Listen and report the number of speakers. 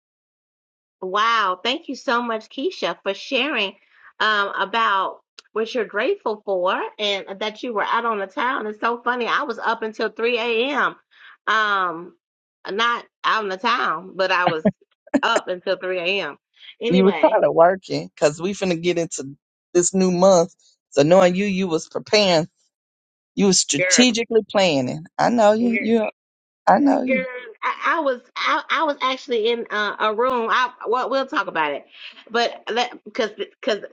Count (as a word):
two